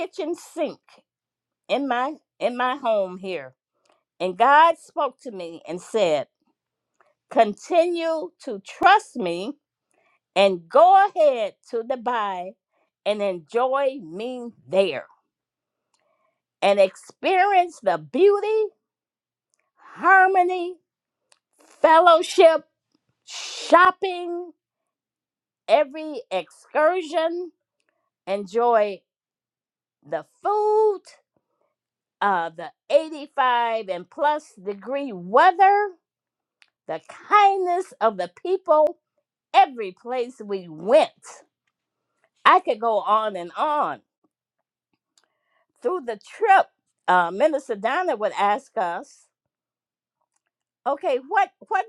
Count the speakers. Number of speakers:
one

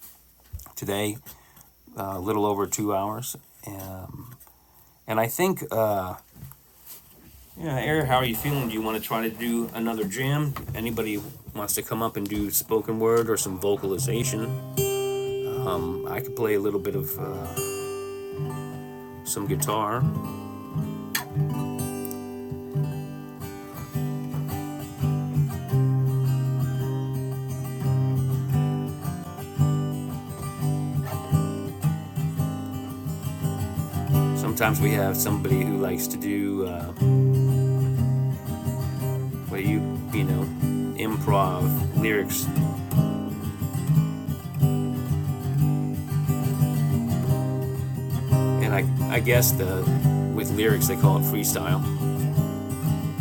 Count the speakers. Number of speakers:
one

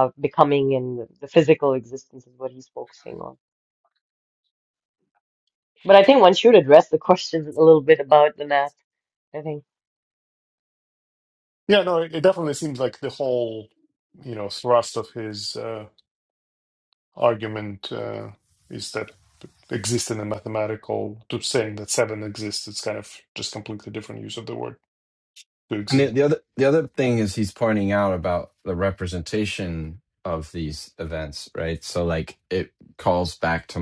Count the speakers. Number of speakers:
three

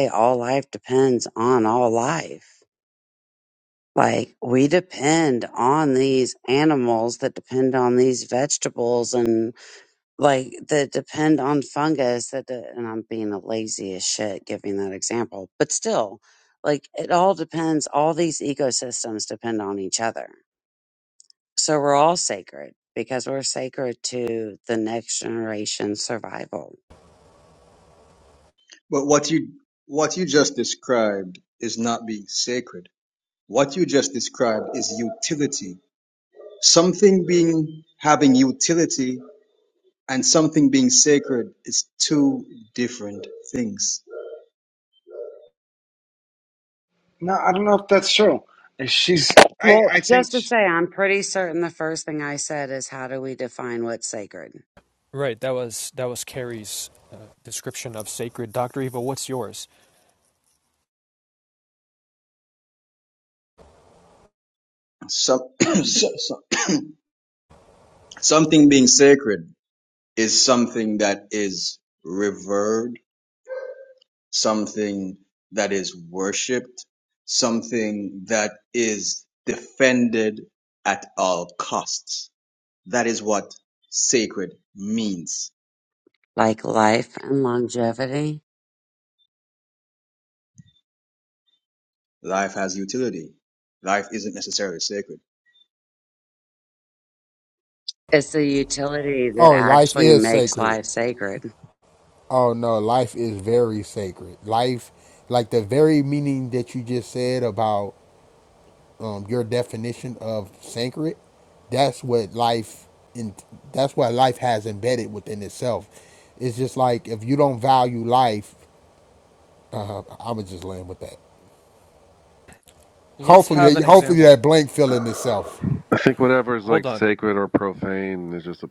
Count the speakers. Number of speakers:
six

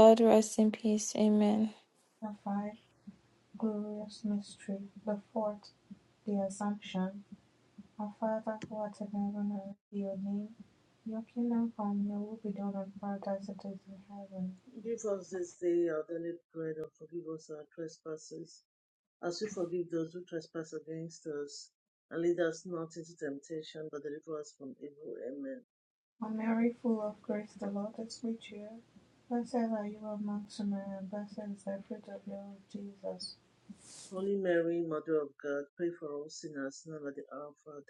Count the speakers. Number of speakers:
three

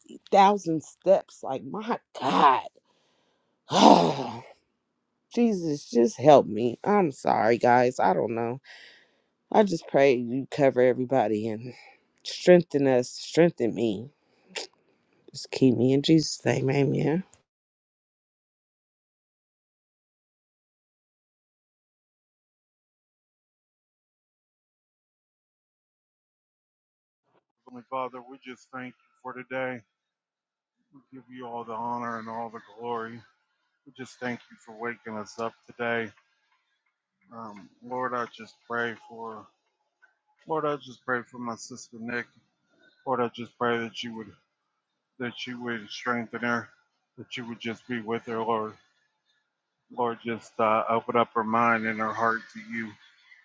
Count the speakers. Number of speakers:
two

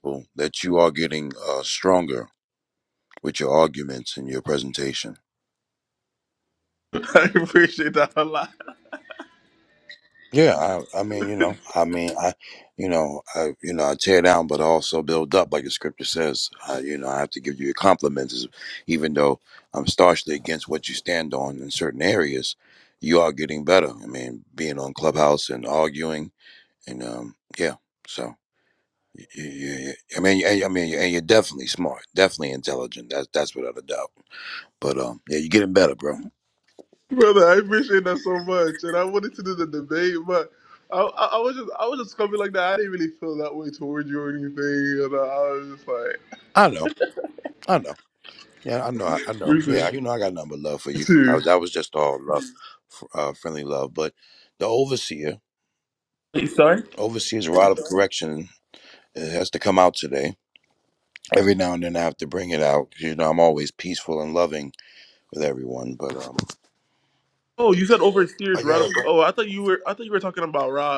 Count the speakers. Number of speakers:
two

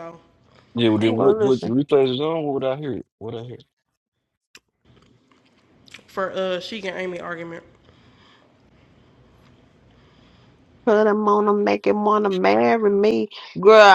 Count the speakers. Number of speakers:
three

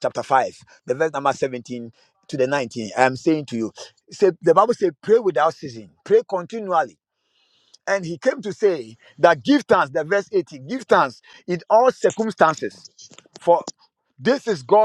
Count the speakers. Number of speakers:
one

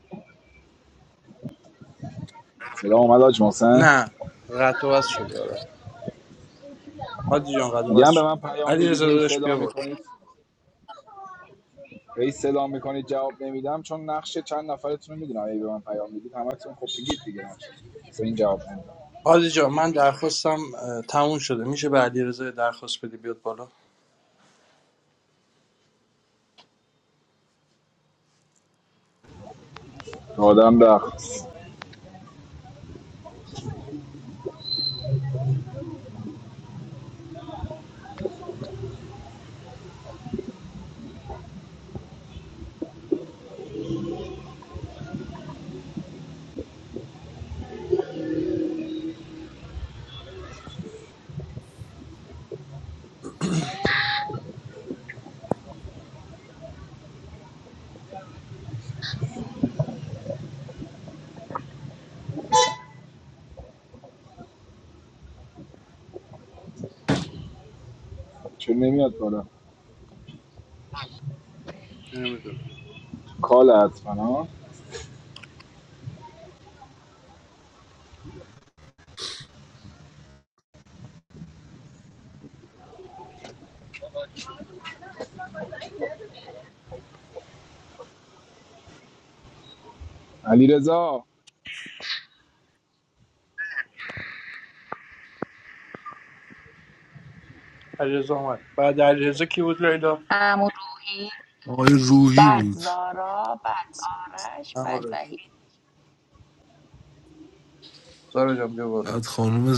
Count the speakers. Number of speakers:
four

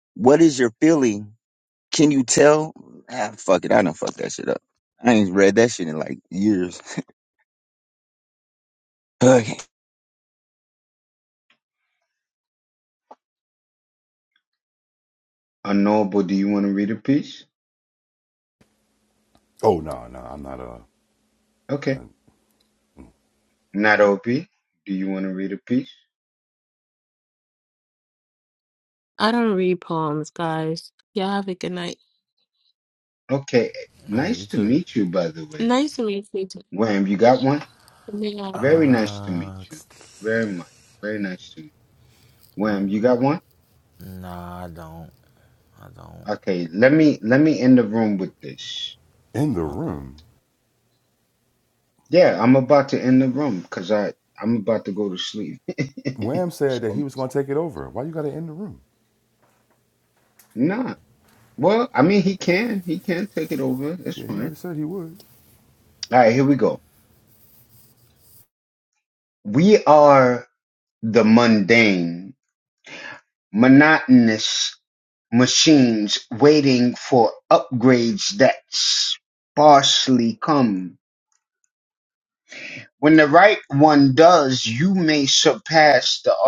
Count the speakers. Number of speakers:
five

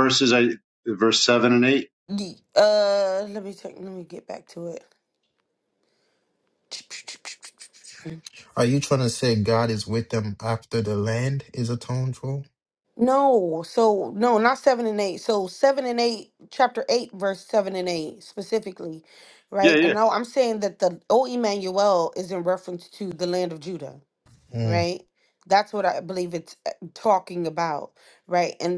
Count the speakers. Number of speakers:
three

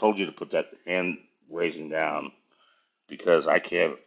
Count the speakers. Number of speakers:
one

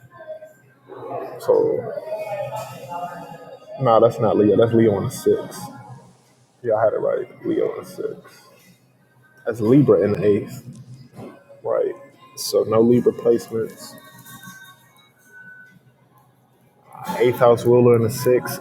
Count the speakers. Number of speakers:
one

